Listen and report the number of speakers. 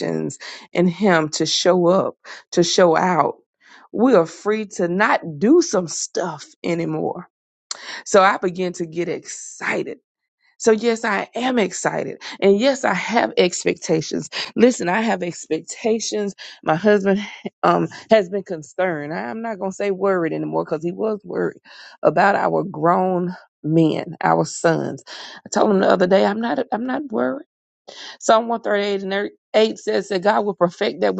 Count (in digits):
1